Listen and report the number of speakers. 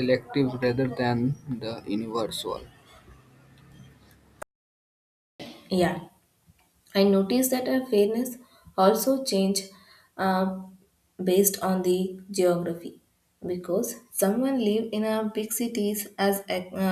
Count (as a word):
two